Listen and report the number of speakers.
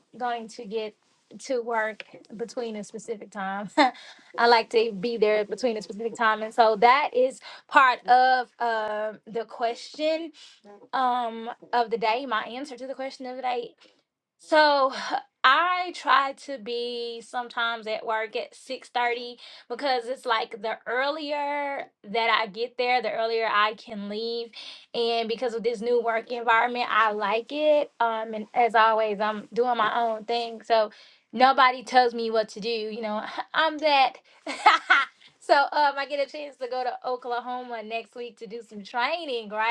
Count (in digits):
1